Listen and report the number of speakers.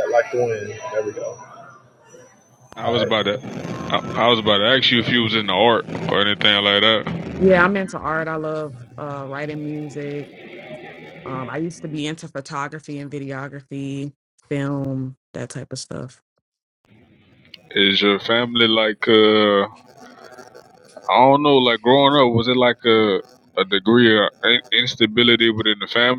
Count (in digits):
3